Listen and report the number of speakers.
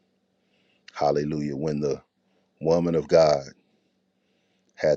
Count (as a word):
one